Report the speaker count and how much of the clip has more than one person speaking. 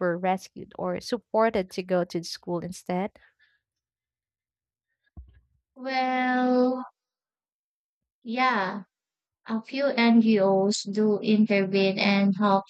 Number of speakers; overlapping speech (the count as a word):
two, no overlap